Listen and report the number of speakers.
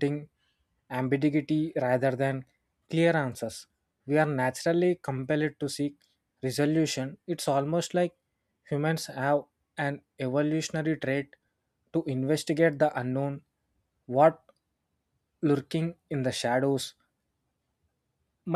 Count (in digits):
1